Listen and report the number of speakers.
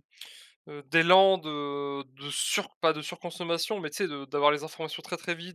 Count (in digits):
1